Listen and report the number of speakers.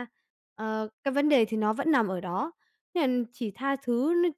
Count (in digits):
1